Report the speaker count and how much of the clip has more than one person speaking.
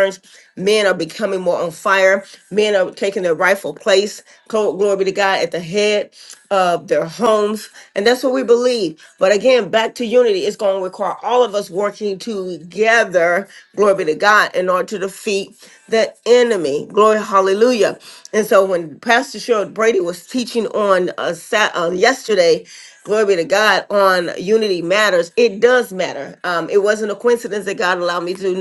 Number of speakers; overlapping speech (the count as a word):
one, no overlap